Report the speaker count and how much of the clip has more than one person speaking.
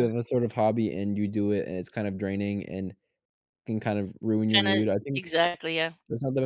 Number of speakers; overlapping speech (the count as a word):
two, about 14%